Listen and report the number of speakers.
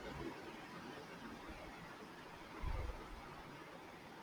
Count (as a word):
zero